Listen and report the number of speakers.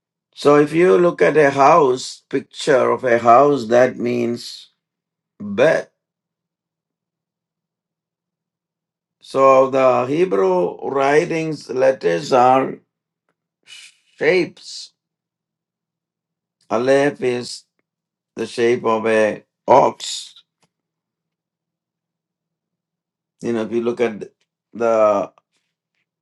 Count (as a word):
one